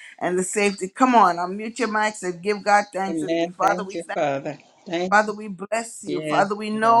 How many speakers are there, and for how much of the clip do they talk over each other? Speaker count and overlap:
two, about 23%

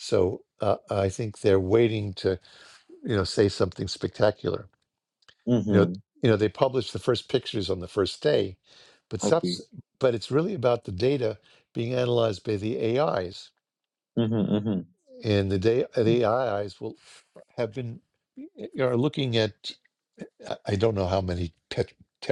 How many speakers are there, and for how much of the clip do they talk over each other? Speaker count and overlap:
two, about 3%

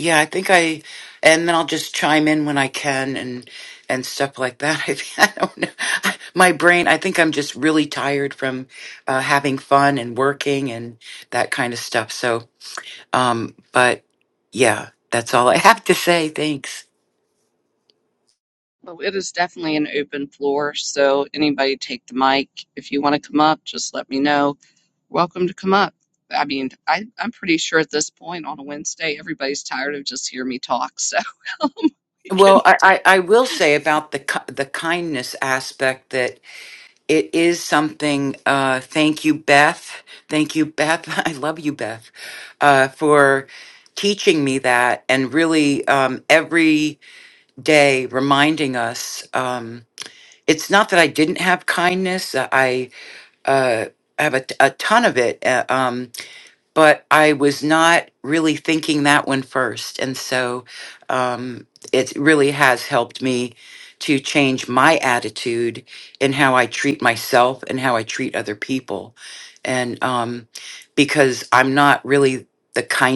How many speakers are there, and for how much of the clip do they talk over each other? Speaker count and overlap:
two, under 1%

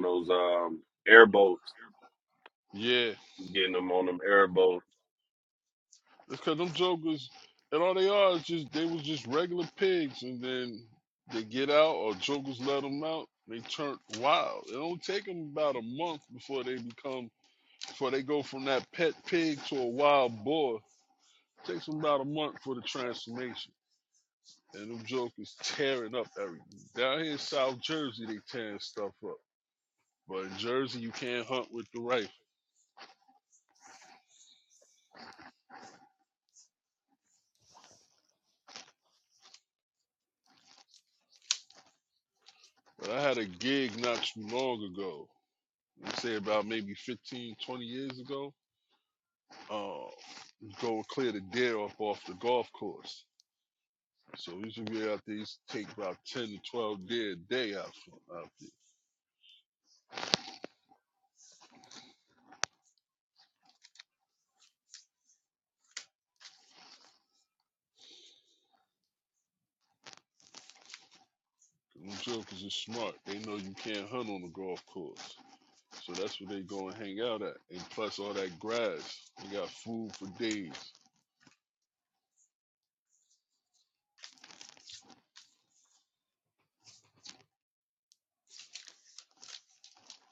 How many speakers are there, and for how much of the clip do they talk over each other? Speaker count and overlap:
two, no overlap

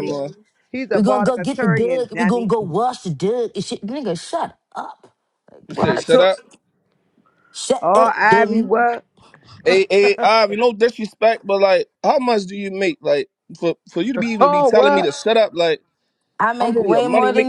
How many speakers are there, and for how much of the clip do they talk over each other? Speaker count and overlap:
three, about 27%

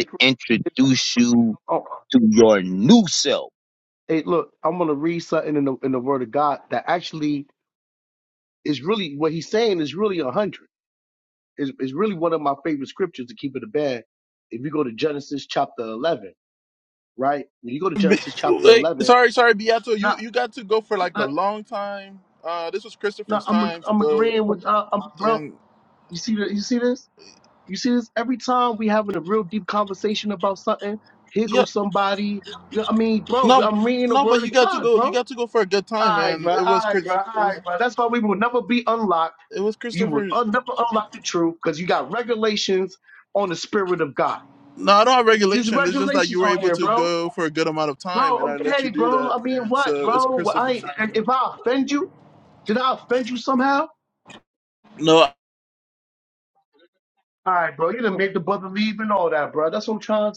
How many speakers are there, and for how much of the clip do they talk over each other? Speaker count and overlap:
three, about 18%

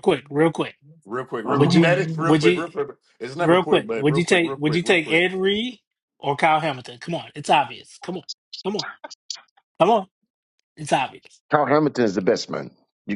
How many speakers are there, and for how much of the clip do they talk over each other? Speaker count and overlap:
three, about 23%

